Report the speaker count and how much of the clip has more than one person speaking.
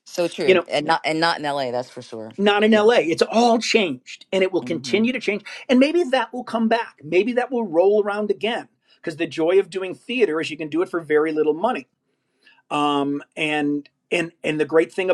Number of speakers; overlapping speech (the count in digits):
2, about 5%